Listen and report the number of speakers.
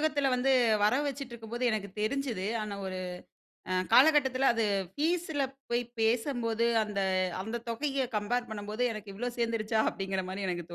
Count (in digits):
1